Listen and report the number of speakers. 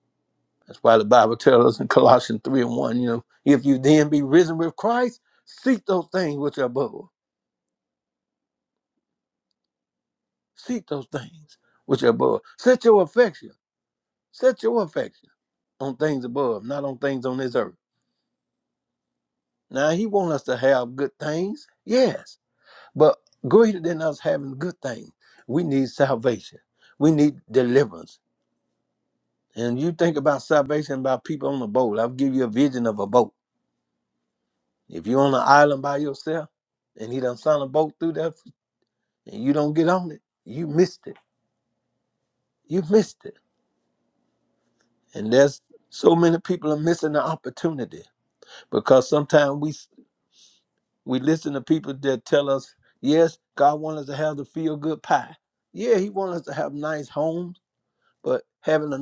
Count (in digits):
1